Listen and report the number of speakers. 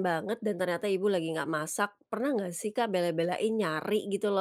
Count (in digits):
1